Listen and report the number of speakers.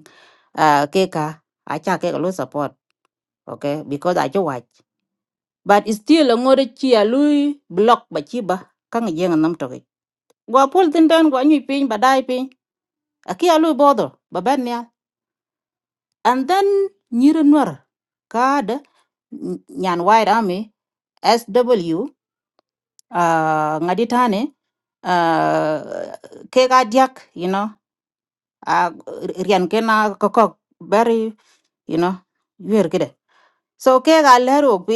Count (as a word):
one